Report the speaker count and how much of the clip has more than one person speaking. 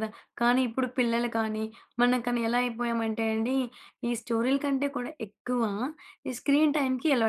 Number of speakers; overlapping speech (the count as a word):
one, no overlap